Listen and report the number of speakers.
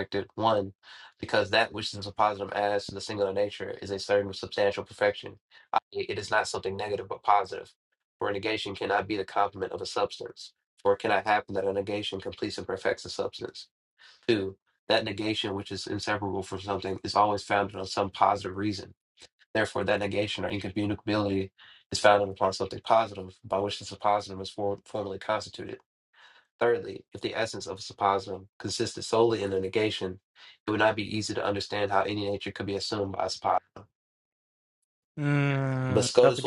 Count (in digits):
2